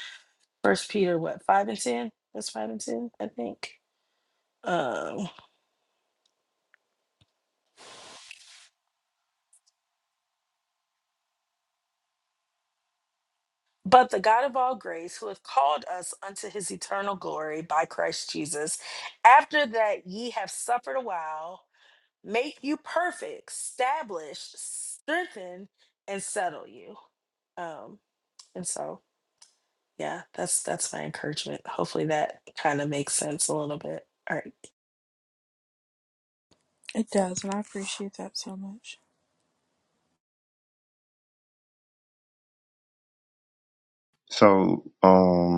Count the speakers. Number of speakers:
3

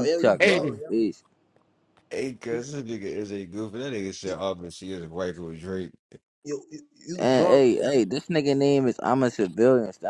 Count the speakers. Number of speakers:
3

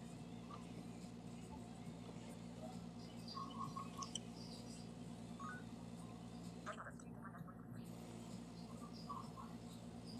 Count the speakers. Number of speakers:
0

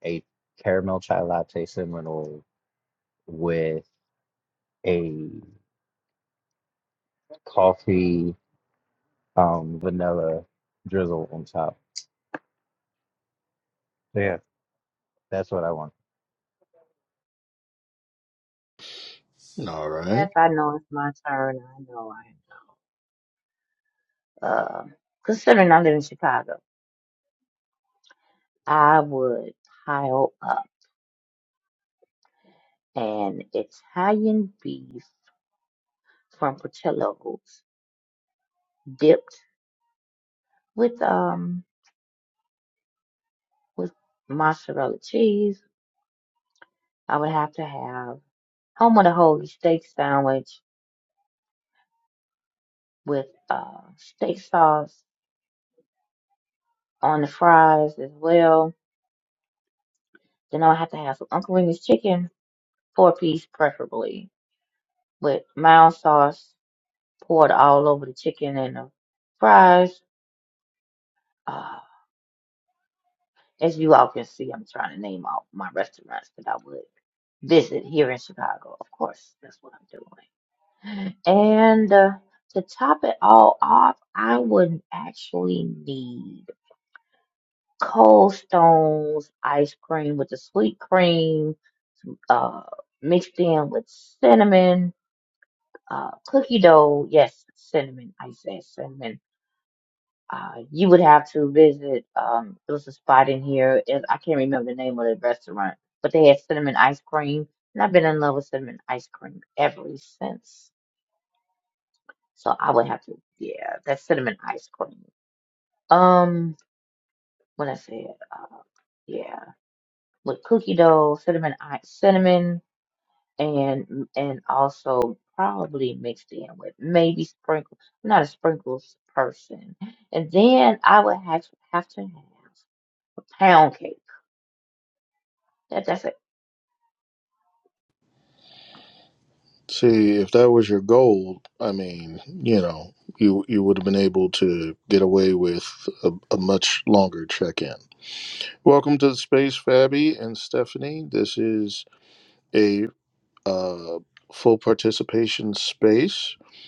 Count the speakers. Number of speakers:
3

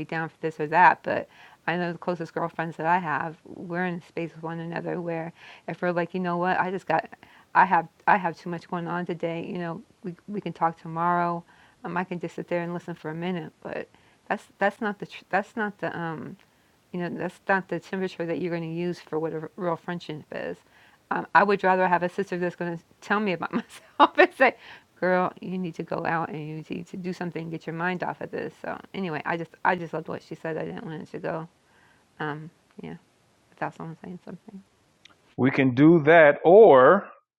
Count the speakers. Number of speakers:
2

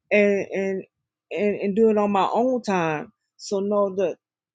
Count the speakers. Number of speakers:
1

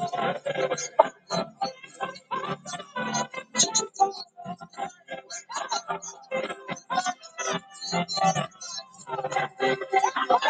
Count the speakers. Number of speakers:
0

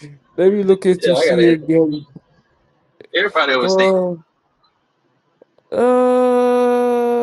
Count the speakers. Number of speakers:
2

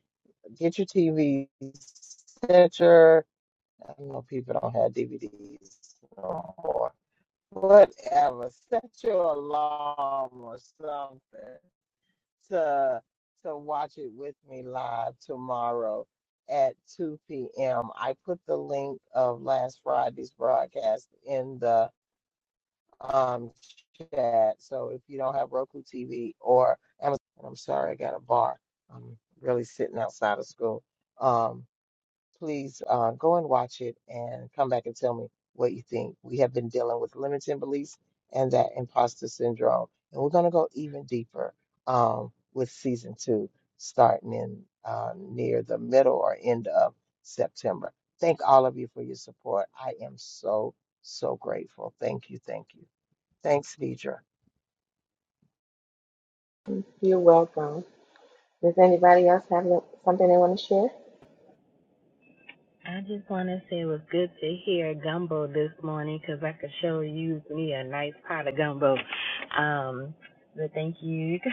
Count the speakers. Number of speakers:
3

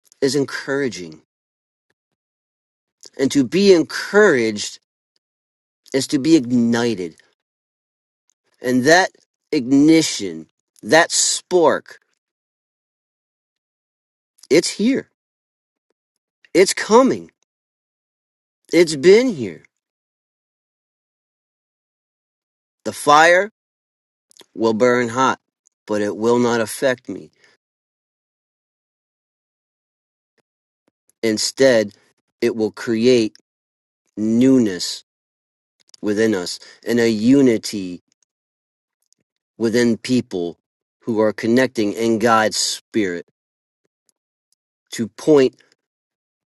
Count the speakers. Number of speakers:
1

